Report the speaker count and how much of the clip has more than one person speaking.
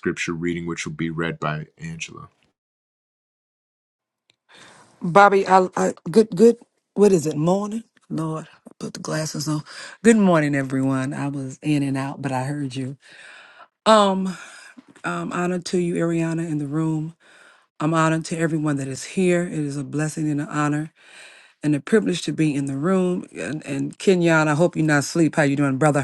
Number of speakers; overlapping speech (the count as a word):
two, no overlap